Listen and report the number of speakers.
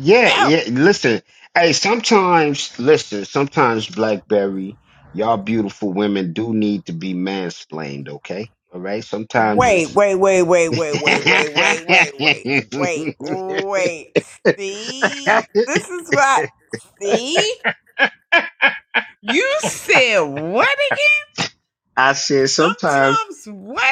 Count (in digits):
2